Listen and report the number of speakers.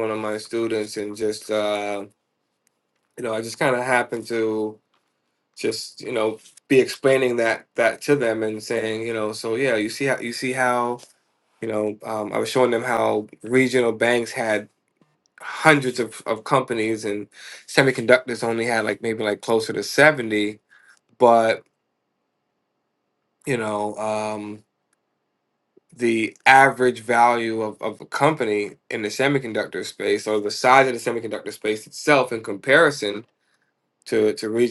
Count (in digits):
1